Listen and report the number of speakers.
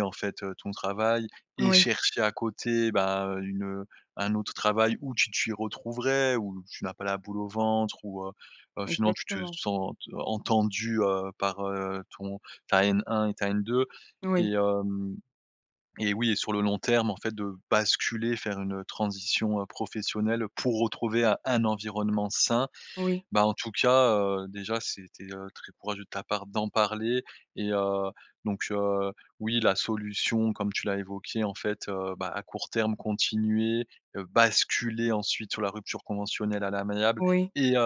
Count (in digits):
2